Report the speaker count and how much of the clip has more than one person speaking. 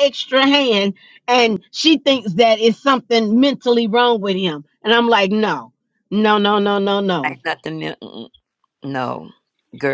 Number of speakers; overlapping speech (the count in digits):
2, about 1%